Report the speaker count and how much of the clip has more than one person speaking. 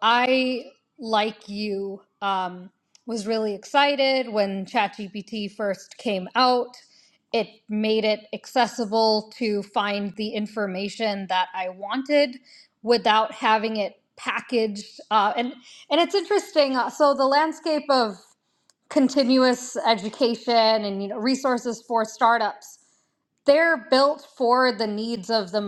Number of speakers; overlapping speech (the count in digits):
1, no overlap